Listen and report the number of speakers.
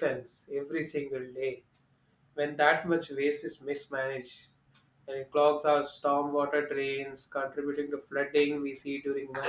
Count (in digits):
1